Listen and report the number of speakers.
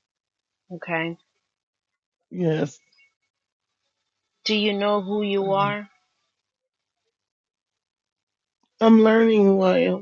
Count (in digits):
2